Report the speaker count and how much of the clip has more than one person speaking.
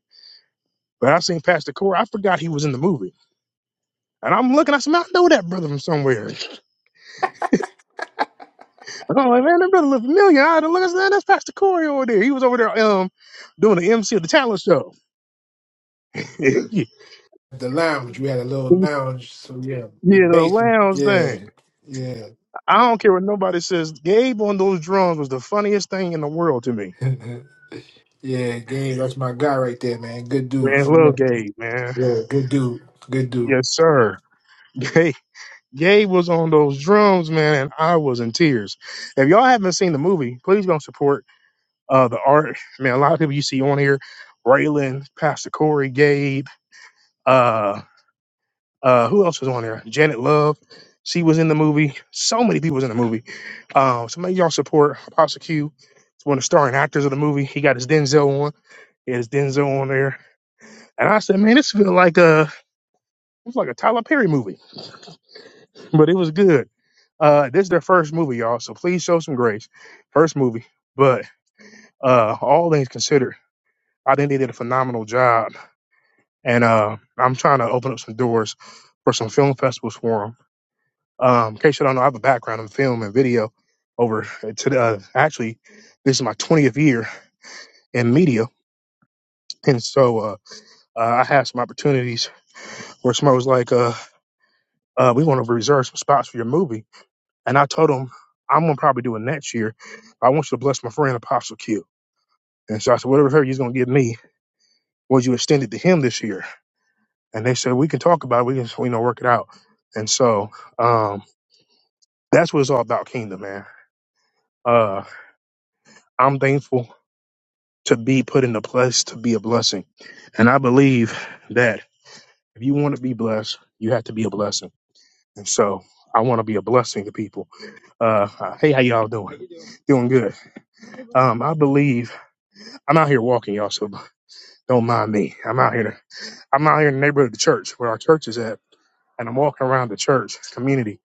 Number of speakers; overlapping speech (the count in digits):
2, about 2%